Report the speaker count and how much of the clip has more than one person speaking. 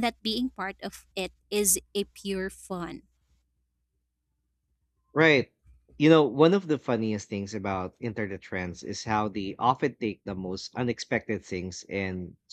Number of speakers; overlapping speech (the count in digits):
2, no overlap